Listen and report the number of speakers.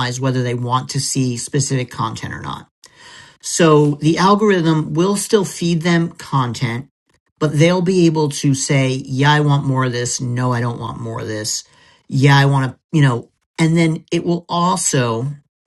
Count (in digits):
1